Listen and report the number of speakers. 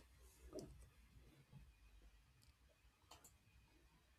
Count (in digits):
0